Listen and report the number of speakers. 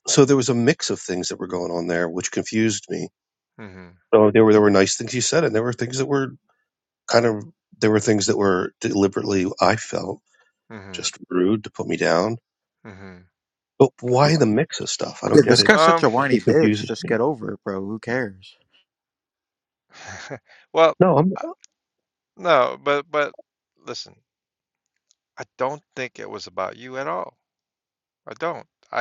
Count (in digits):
3